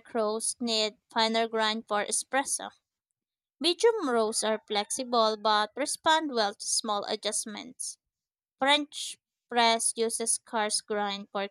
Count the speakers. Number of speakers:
1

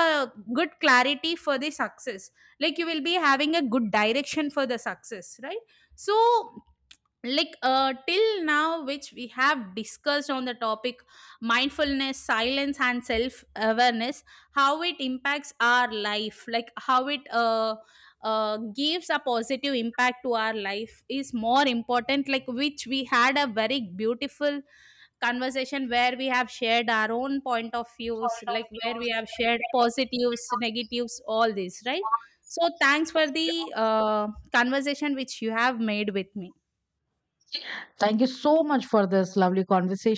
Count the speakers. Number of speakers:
2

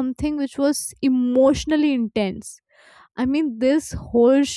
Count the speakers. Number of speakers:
1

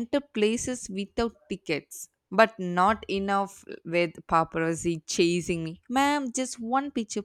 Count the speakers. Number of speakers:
1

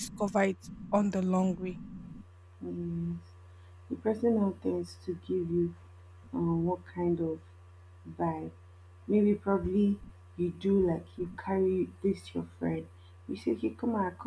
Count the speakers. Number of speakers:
2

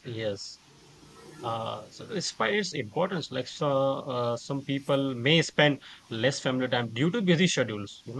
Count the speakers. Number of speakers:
1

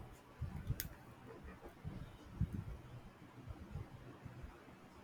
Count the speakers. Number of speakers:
0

